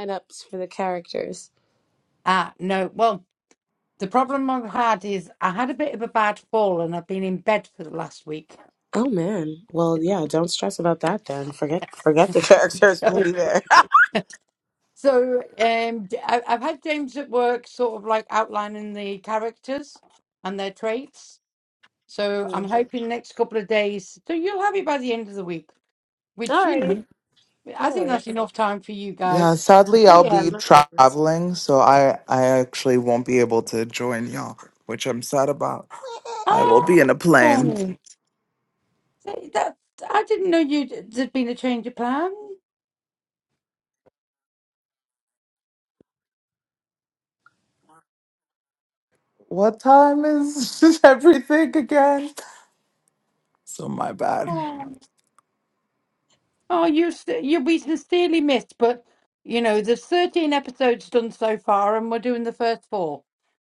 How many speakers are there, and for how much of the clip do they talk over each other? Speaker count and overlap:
three, about 5%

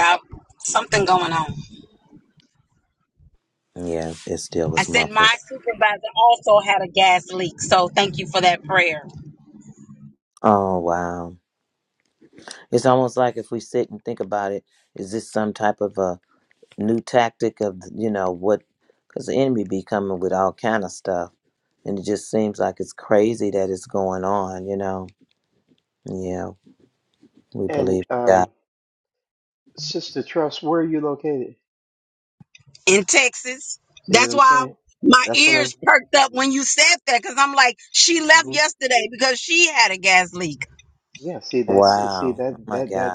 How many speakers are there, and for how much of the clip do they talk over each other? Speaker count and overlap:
three, about 10%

